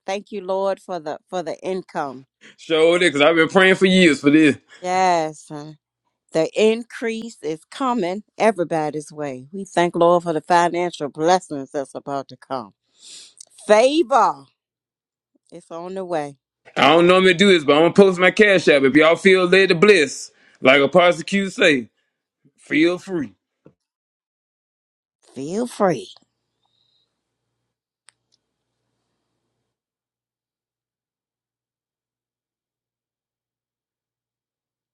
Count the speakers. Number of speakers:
two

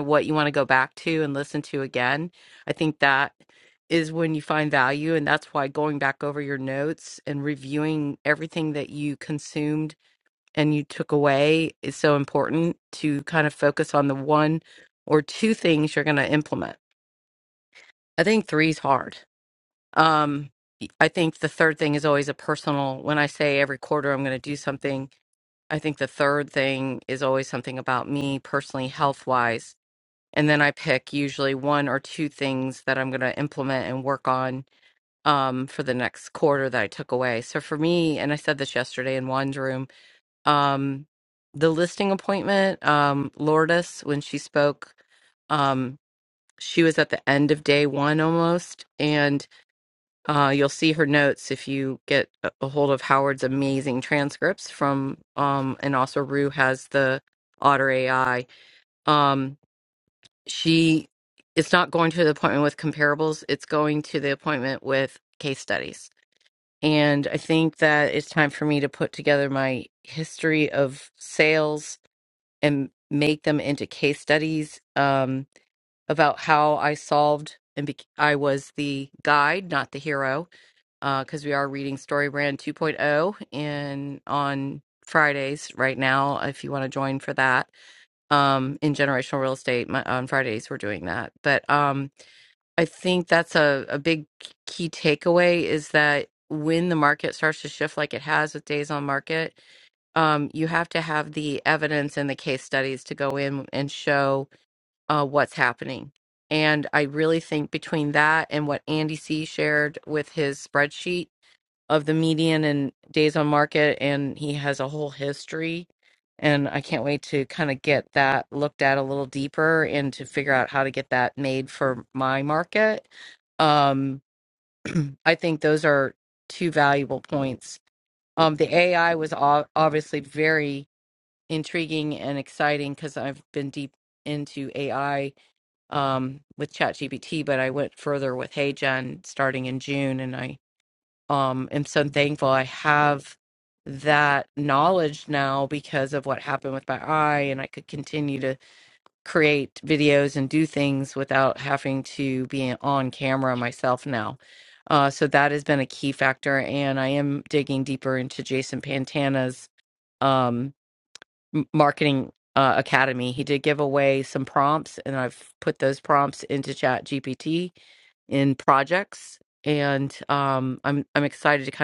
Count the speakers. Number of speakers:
one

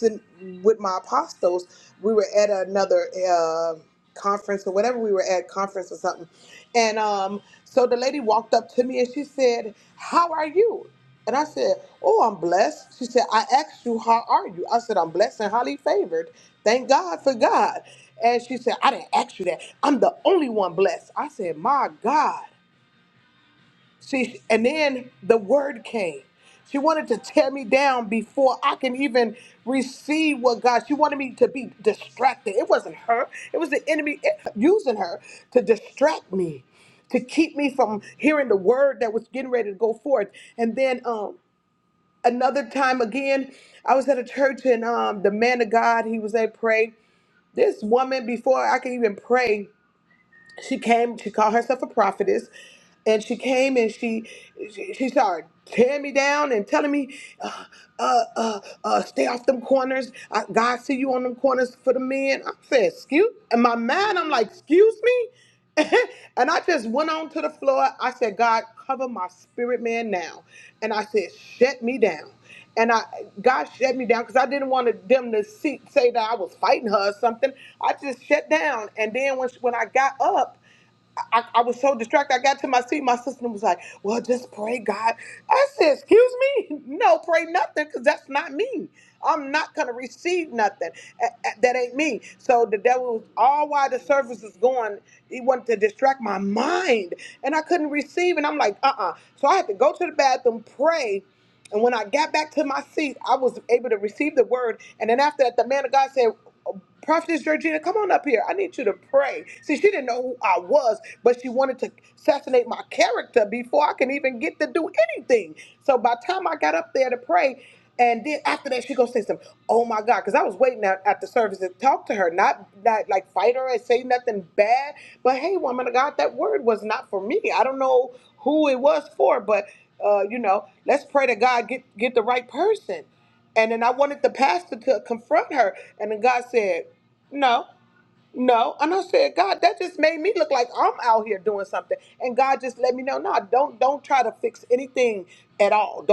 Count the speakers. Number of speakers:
one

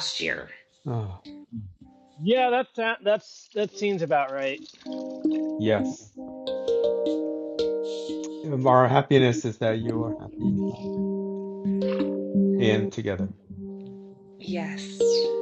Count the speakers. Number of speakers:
three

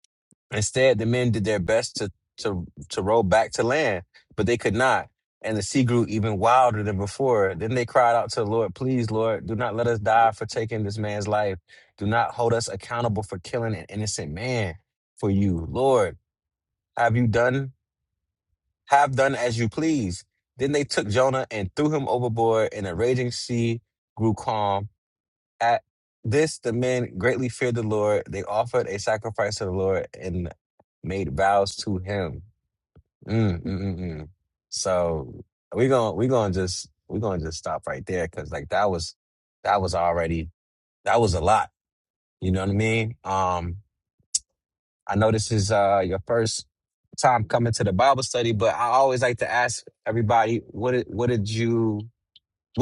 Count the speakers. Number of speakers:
one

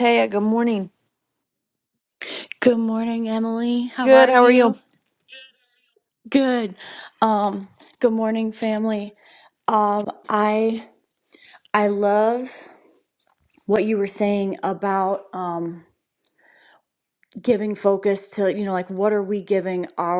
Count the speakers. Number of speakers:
two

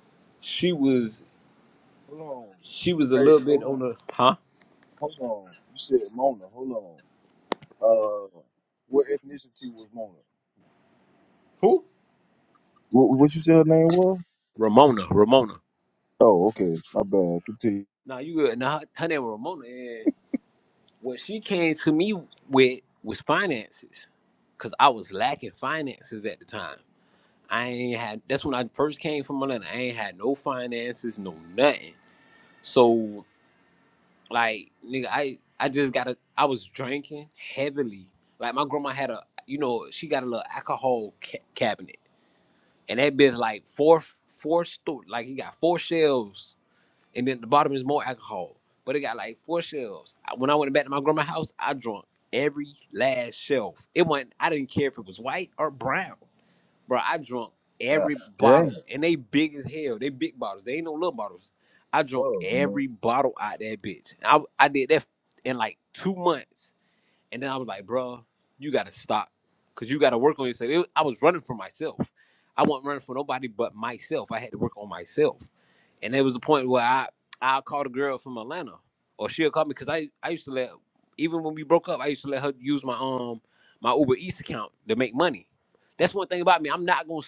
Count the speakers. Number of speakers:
two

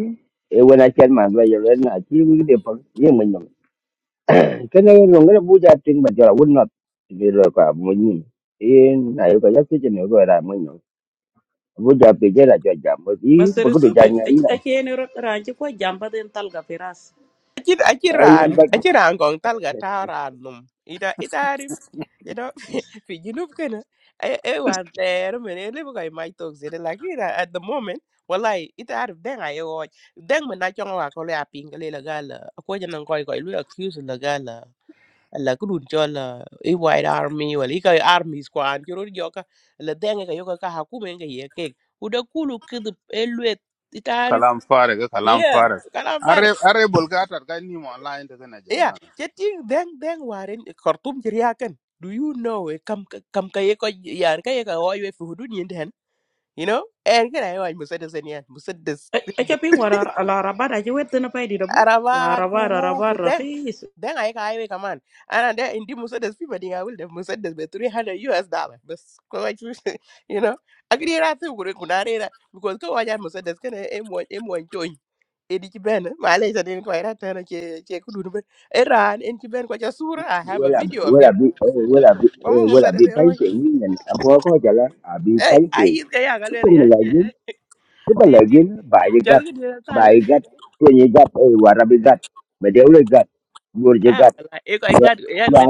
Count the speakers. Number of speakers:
four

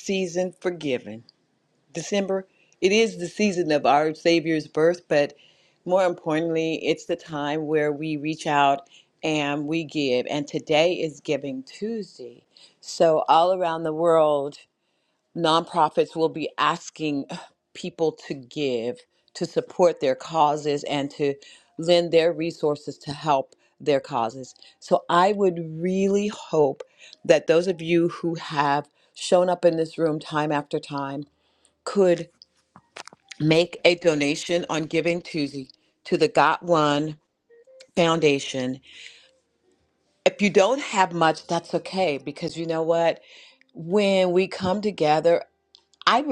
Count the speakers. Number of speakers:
one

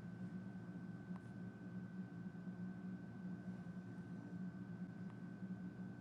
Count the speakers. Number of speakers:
zero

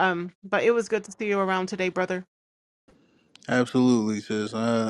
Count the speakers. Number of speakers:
two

